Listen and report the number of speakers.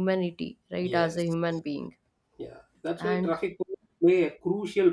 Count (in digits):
2